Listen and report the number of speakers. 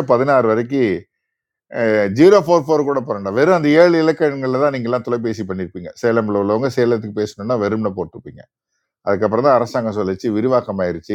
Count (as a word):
one